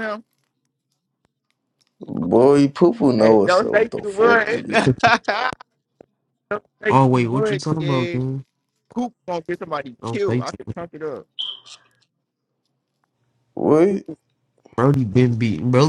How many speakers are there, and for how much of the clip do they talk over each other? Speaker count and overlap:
3, about 21%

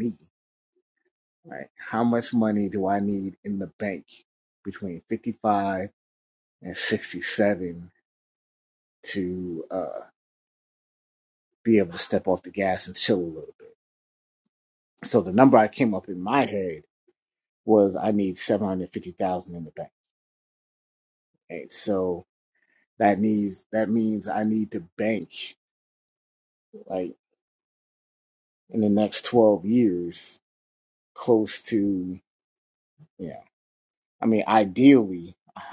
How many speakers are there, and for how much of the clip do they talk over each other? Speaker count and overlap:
1, no overlap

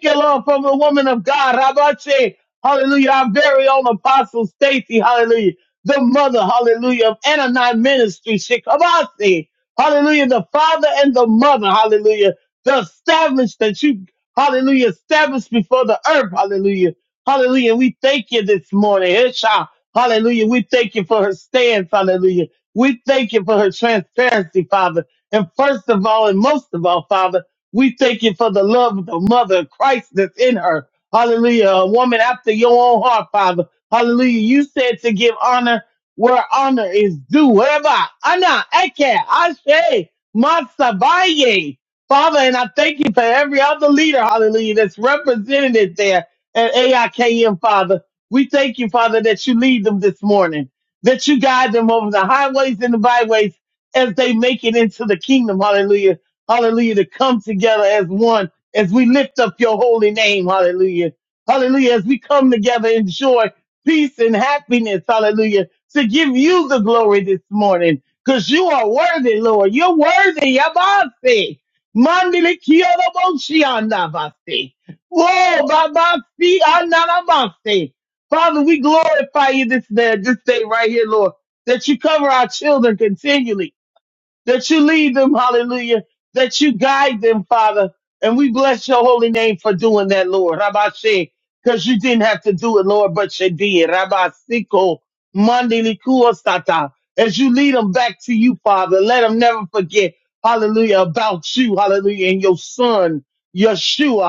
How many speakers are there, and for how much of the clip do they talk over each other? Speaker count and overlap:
1, no overlap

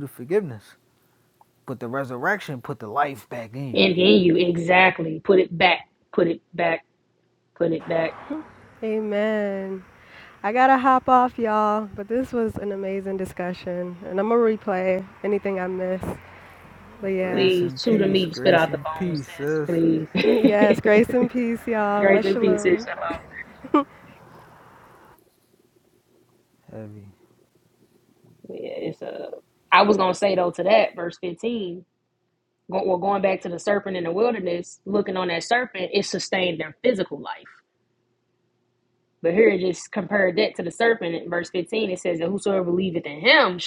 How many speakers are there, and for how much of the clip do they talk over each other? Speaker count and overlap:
3, about 8%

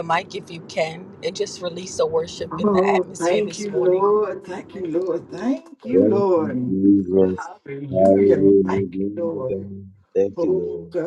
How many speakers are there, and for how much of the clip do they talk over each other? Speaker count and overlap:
3, about 43%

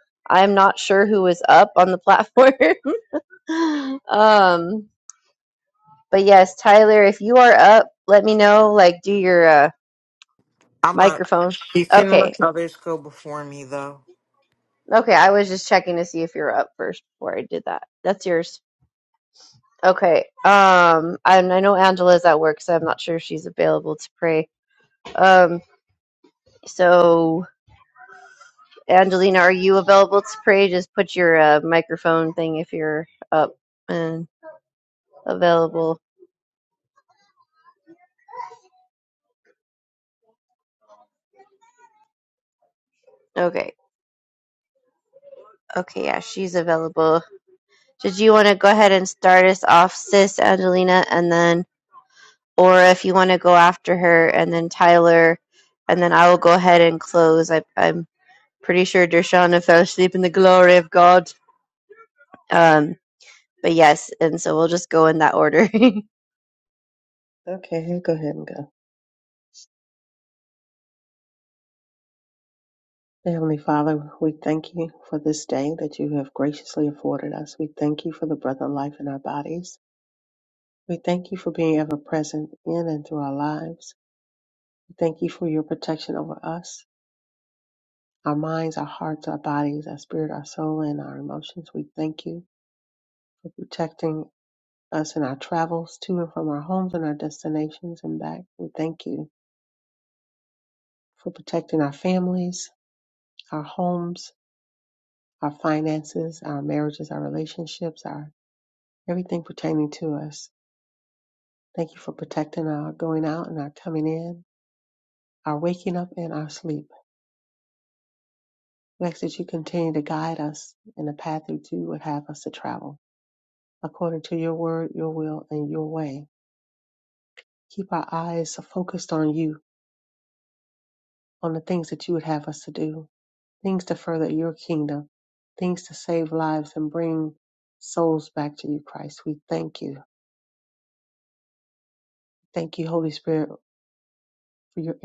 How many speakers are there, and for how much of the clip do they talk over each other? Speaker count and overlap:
3, about 1%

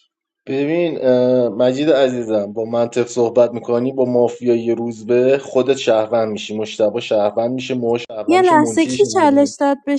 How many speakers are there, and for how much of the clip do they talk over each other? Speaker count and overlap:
2, about 11%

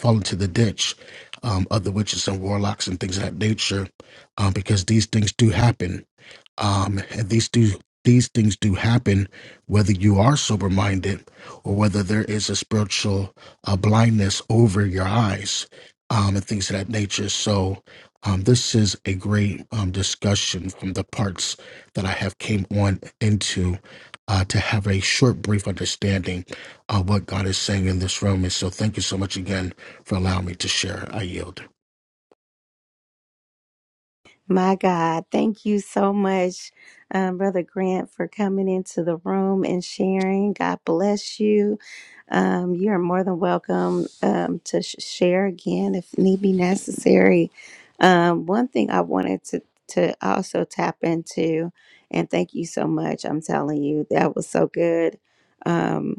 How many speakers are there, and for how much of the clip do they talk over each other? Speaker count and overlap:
2, no overlap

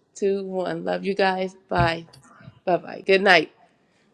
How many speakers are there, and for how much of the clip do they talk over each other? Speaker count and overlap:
1, no overlap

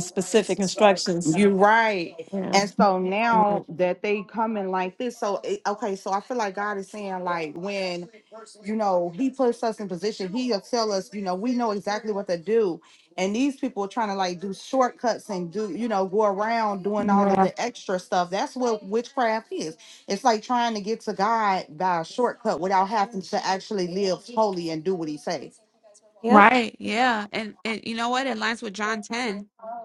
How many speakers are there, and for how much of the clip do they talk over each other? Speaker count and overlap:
3, about 4%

